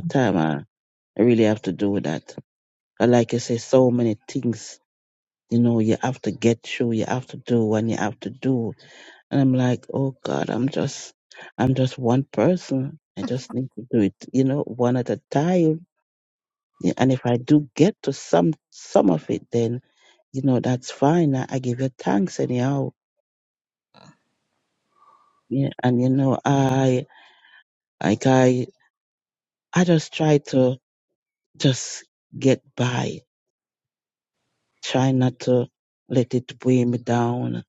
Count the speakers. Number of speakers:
1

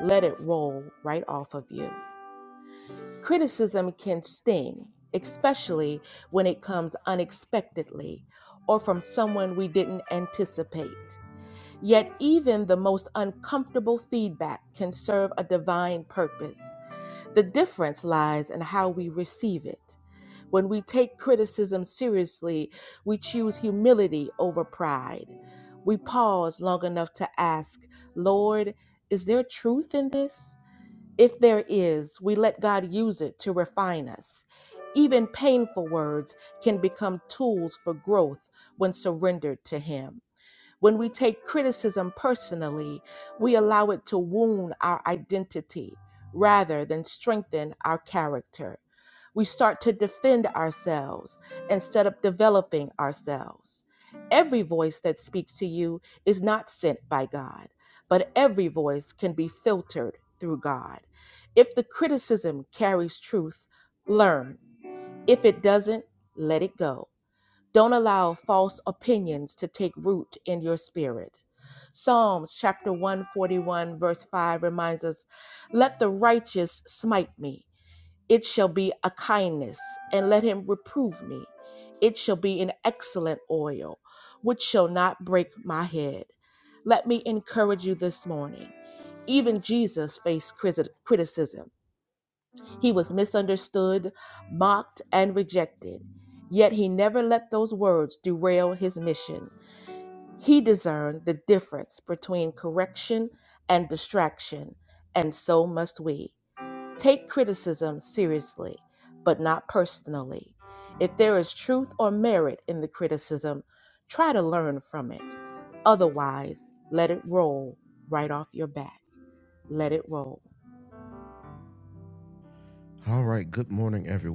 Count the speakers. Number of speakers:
2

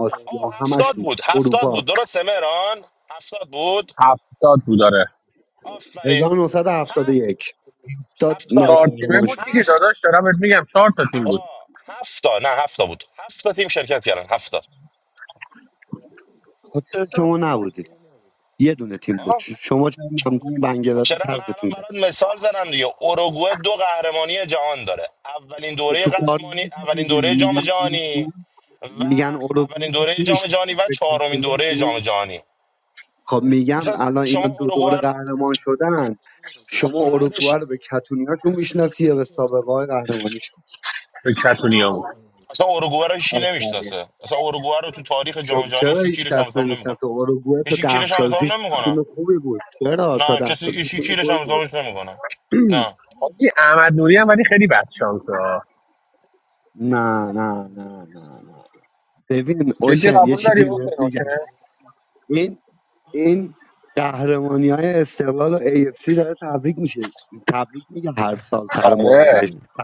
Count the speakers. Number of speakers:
3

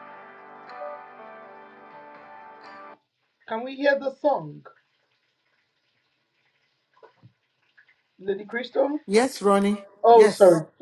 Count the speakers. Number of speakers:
2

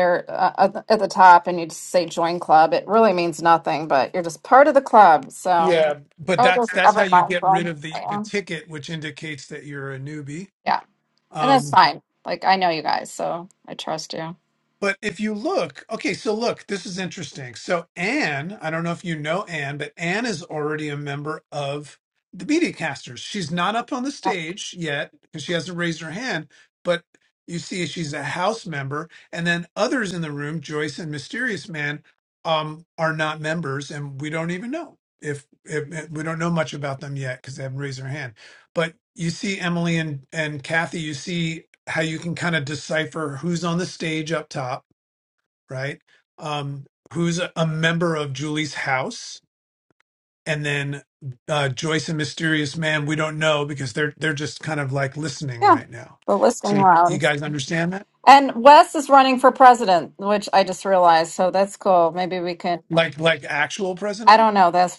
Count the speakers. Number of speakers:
2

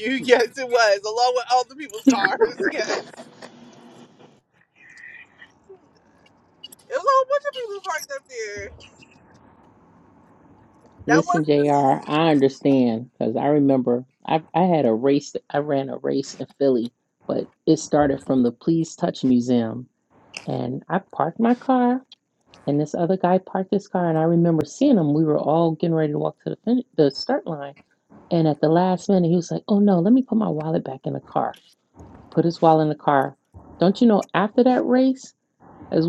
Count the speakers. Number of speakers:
2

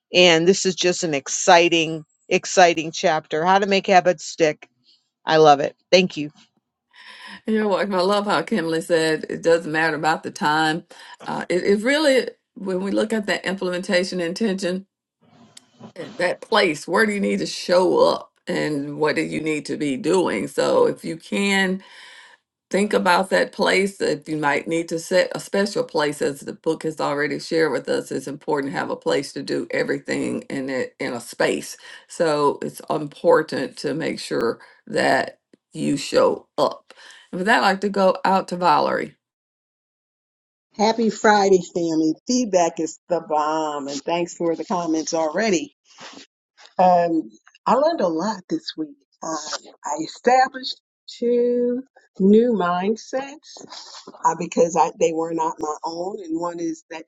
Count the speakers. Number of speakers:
3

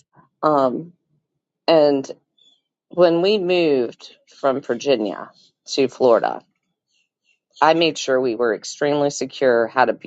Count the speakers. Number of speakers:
1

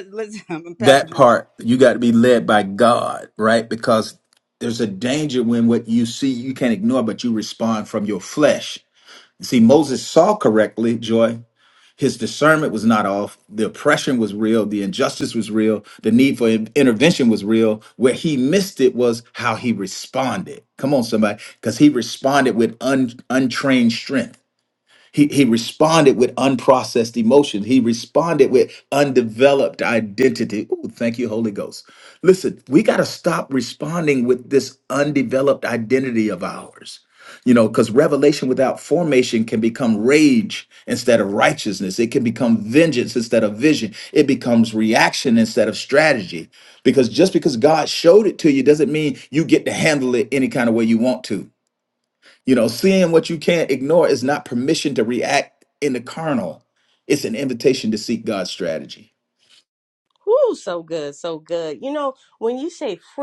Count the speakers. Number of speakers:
3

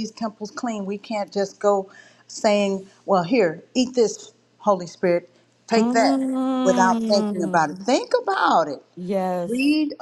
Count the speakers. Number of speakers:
2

